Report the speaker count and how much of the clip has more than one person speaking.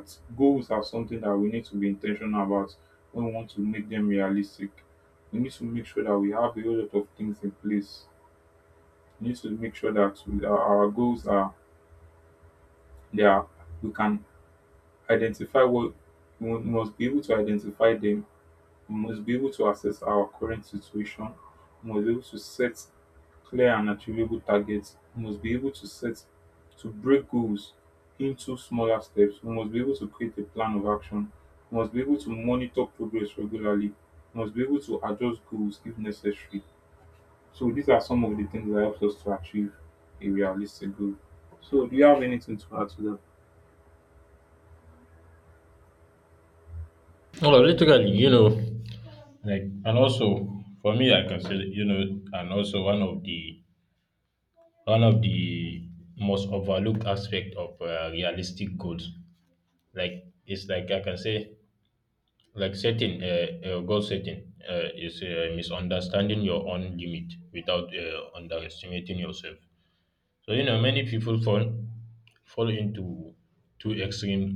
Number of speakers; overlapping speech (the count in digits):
2, no overlap